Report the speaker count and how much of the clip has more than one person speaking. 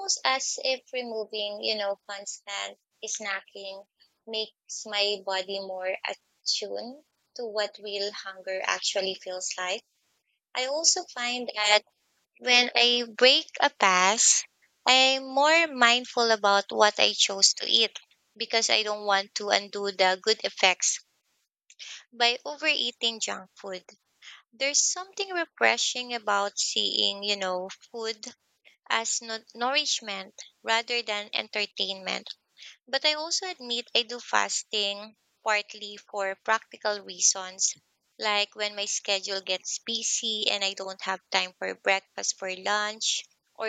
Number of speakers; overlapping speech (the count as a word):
one, no overlap